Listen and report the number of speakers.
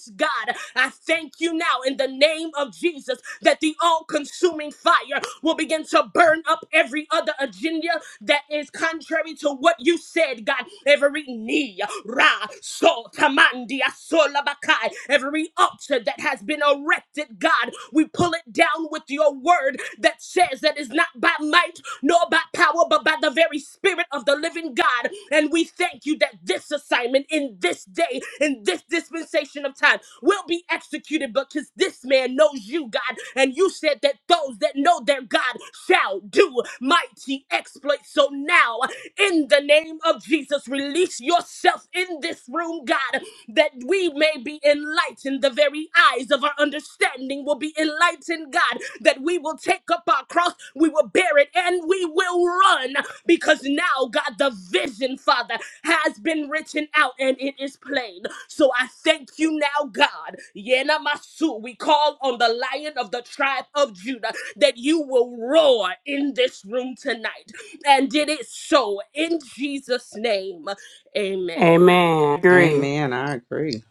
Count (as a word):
three